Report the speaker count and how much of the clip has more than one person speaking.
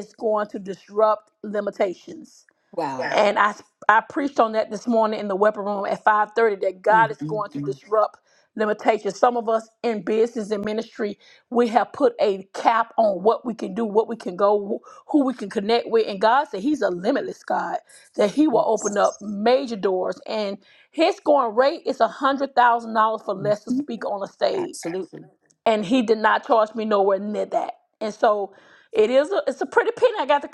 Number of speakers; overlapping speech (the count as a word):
two, about 5%